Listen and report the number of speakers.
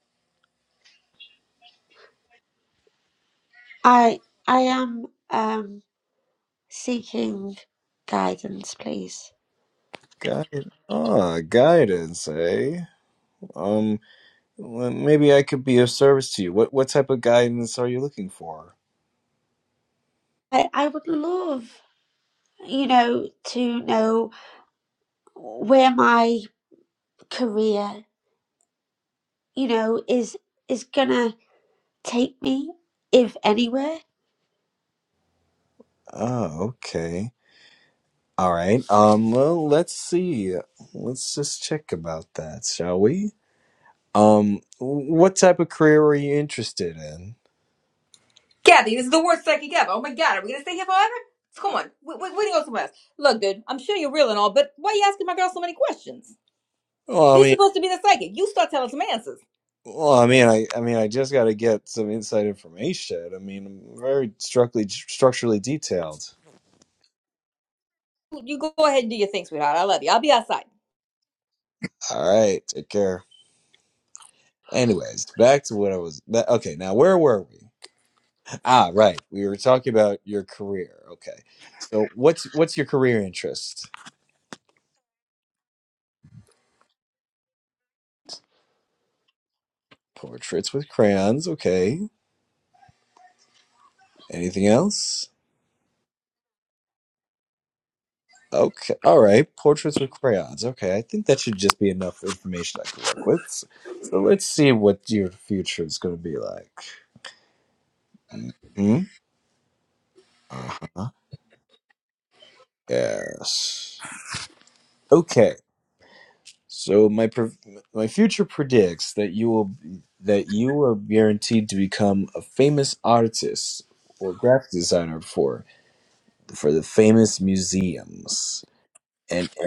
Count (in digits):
3